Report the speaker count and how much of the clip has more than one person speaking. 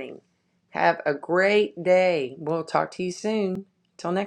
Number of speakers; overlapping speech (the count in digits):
1, no overlap